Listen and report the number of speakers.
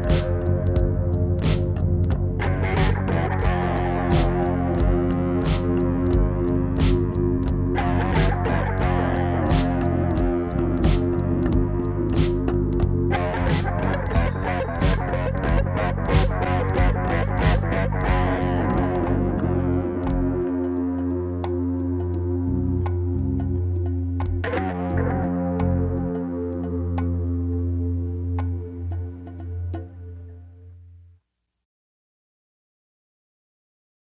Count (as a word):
zero